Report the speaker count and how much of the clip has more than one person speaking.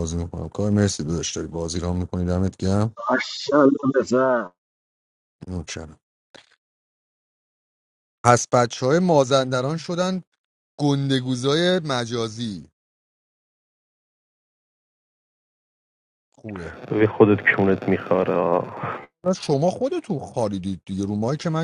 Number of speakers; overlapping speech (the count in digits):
3, no overlap